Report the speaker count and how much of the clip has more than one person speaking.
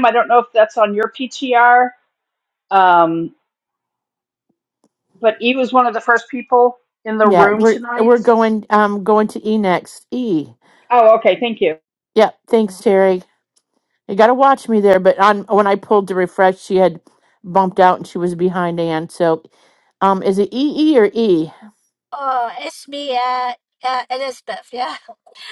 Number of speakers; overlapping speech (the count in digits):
3, about 3%